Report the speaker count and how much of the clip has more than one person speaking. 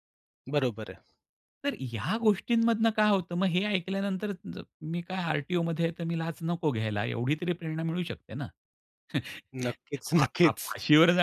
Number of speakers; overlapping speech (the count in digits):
2, about 4%